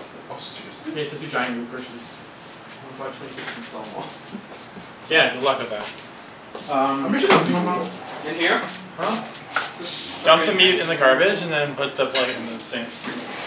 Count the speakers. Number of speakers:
3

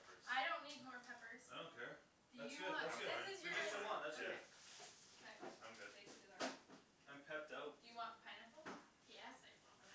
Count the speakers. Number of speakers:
4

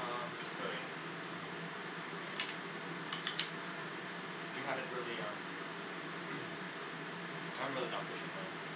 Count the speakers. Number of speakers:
1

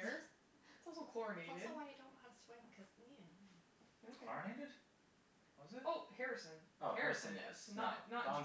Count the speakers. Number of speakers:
3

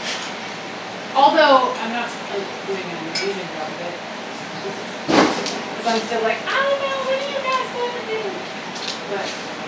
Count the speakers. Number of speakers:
1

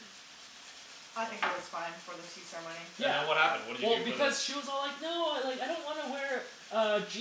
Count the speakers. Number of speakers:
3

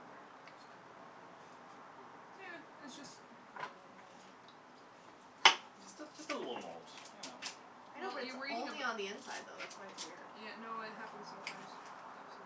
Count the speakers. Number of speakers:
3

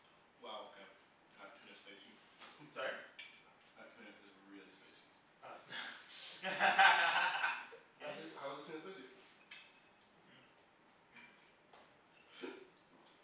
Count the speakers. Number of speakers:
3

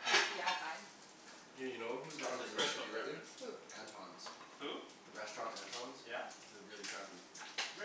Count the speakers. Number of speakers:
3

